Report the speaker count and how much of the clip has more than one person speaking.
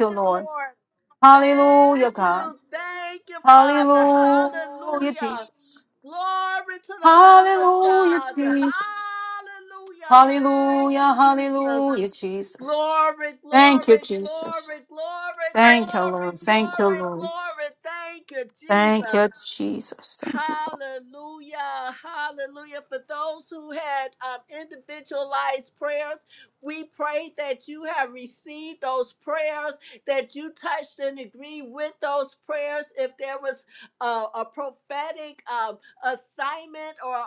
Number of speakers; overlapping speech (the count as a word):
two, about 25%